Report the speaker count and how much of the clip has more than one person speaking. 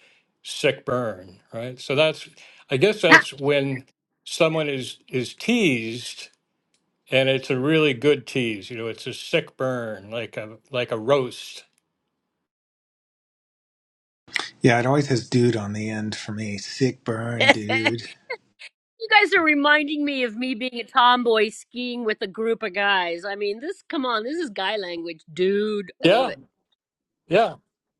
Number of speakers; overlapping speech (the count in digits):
3, about 4%